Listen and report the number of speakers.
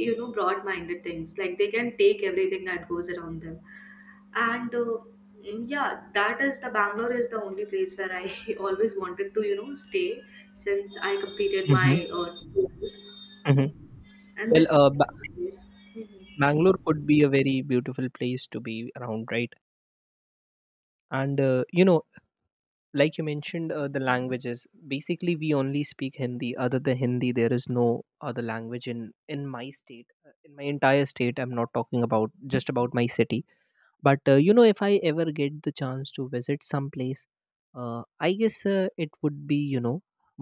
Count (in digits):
2